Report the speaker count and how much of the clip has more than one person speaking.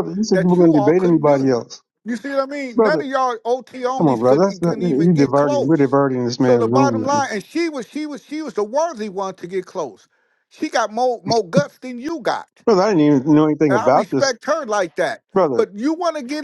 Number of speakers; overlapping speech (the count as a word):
two, about 28%